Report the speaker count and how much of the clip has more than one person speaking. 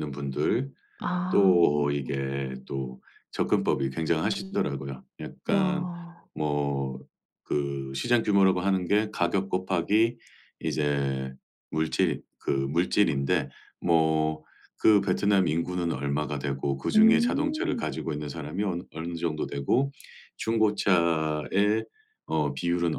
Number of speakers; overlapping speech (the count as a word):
two, about 7%